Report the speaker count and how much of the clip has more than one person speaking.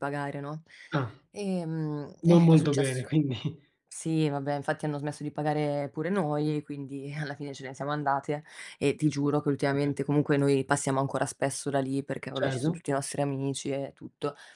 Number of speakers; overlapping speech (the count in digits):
2, about 10%